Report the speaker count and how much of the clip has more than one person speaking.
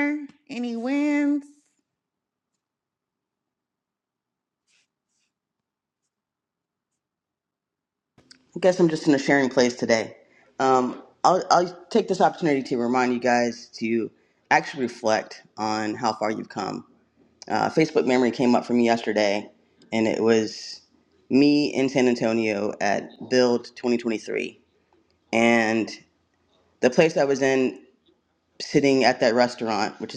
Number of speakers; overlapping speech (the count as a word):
two, no overlap